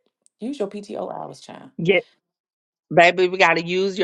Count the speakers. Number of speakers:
2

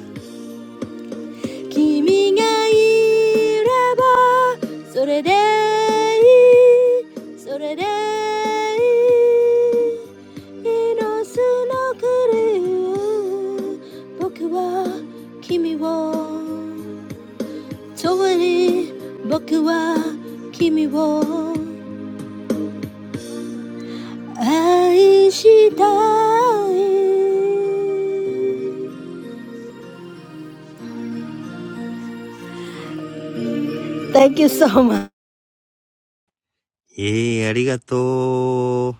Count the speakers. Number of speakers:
2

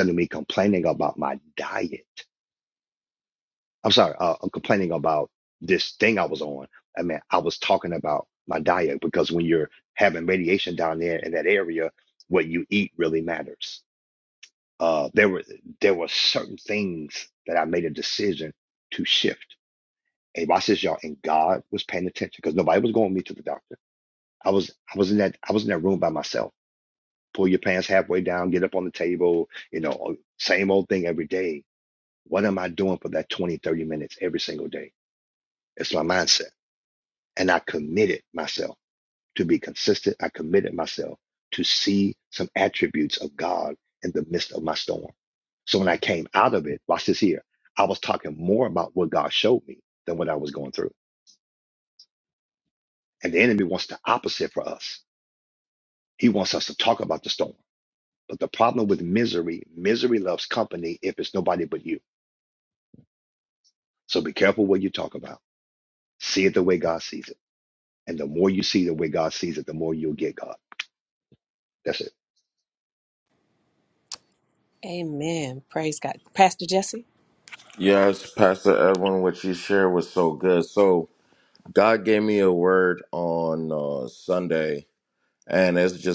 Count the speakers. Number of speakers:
3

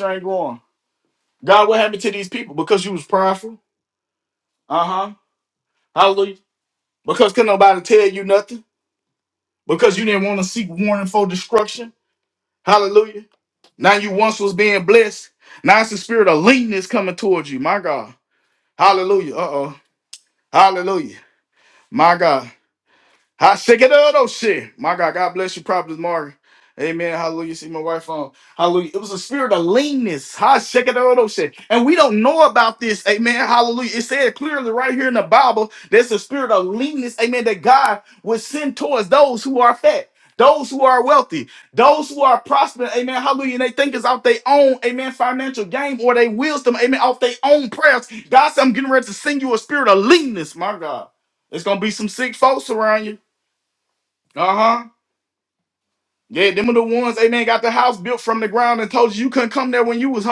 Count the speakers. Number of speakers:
1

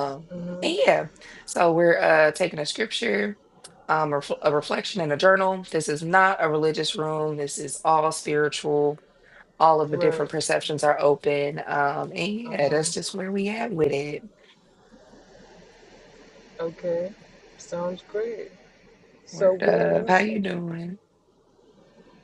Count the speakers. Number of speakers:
2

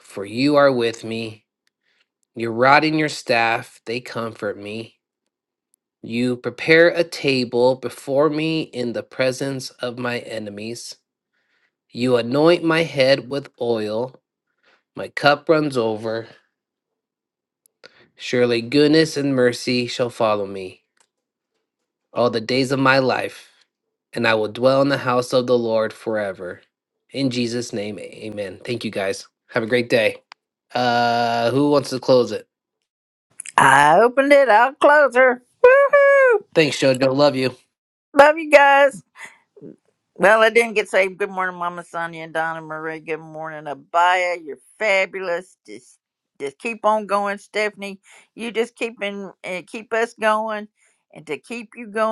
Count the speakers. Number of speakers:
2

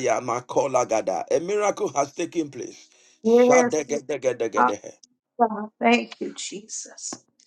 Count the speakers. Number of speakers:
2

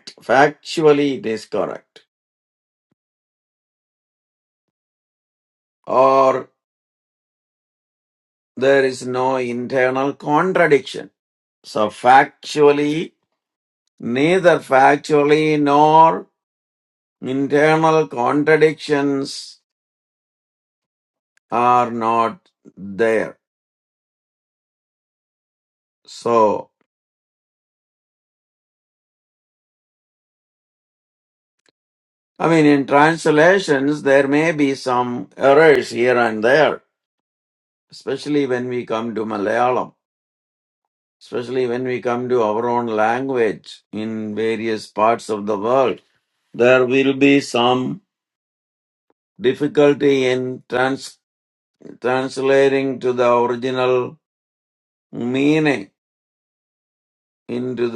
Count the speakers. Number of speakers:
1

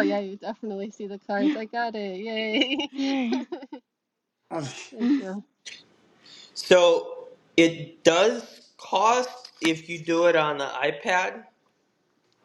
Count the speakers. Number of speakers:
3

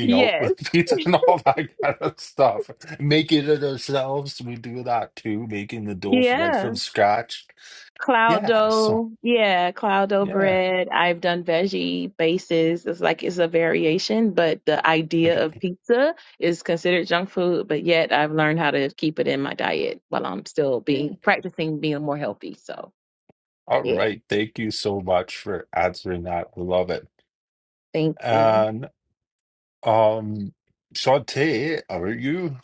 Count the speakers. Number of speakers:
2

